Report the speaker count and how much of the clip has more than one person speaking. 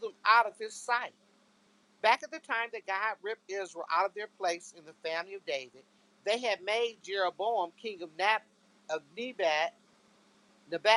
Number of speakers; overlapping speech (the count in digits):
1, no overlap